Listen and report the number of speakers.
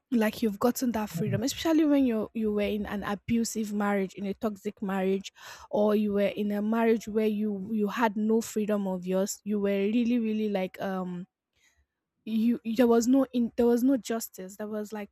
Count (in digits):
1